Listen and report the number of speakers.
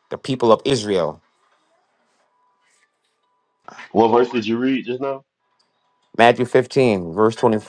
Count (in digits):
2